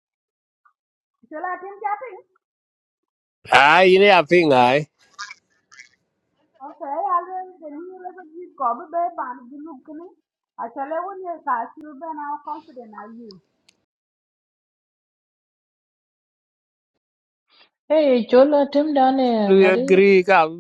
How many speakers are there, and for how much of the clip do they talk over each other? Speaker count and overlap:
3, about 2%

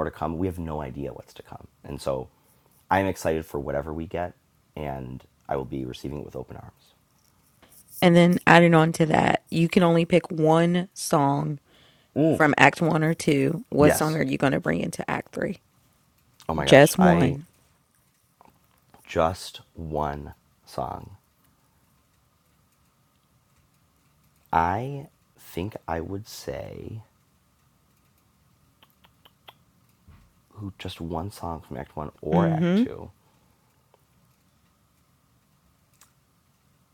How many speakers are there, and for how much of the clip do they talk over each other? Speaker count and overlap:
2, about 5%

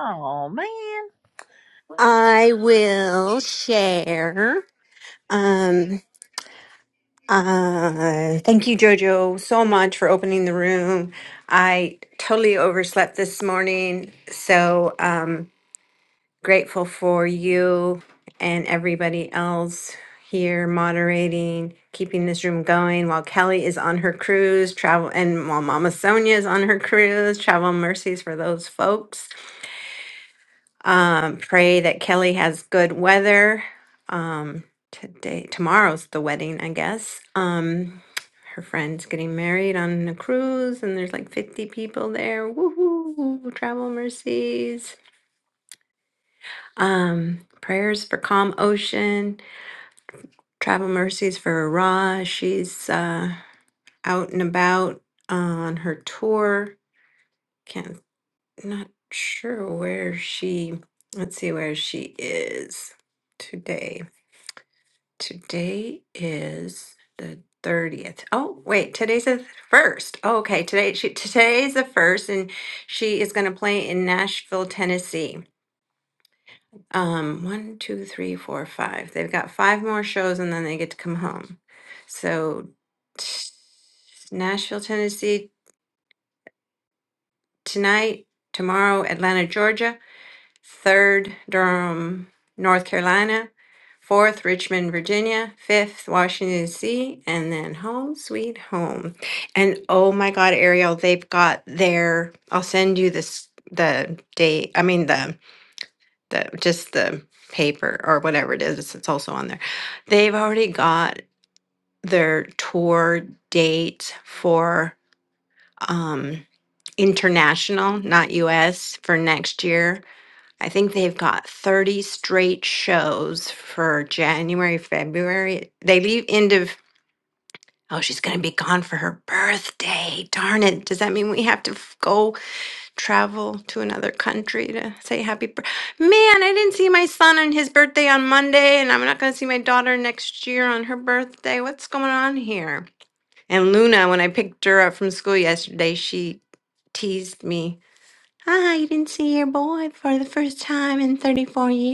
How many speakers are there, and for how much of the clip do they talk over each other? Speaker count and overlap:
2, no overlap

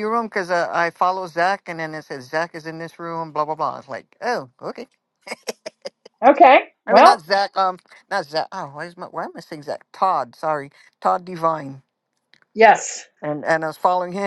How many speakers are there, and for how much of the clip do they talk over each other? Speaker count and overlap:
2, about 2%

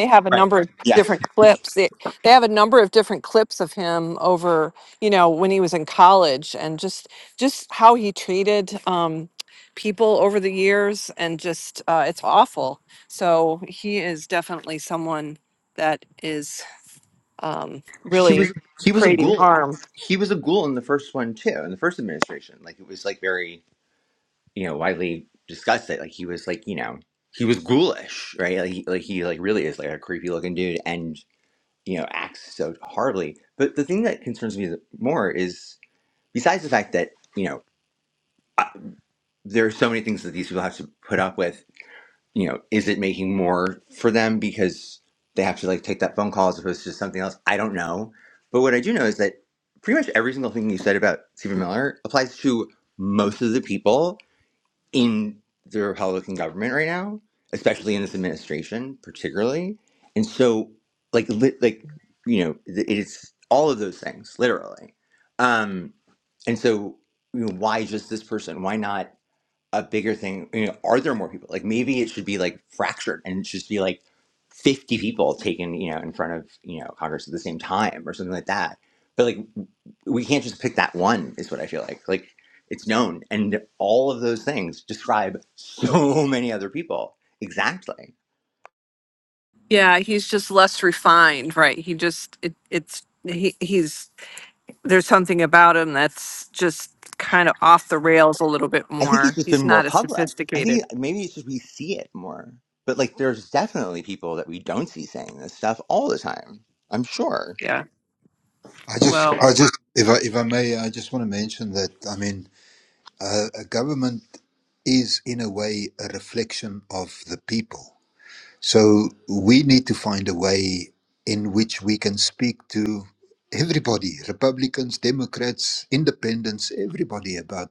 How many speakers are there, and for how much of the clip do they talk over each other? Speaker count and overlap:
3, about 3%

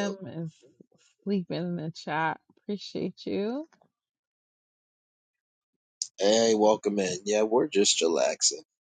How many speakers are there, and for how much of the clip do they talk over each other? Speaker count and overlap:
2, about 1%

